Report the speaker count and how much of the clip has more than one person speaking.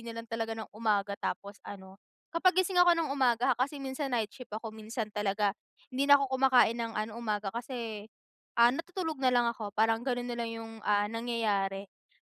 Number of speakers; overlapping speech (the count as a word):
one, no overlap